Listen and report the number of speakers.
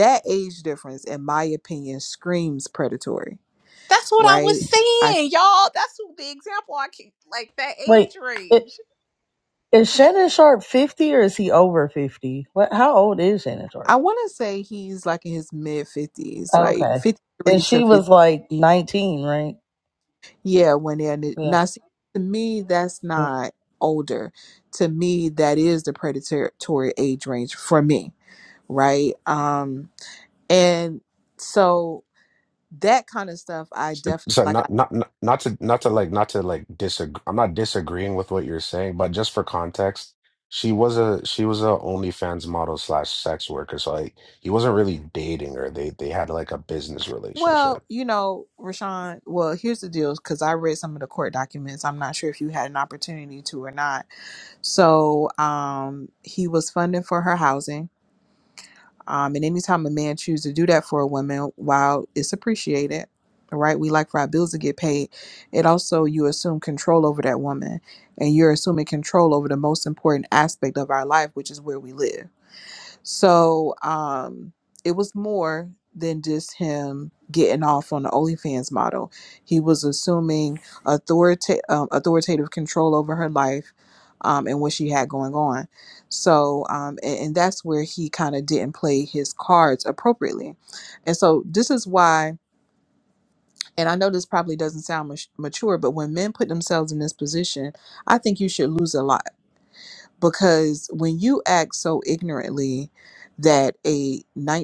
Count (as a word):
four